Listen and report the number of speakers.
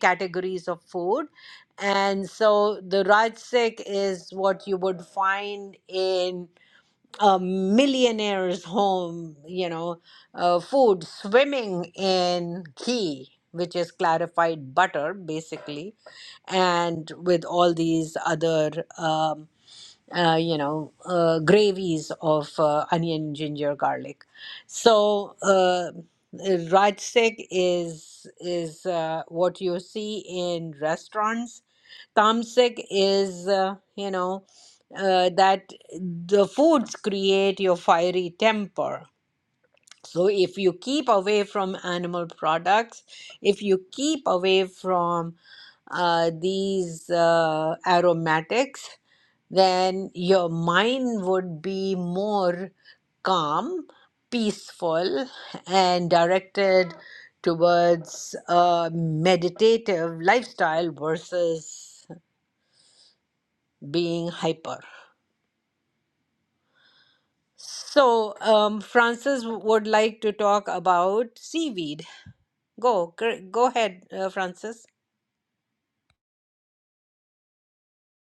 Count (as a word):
one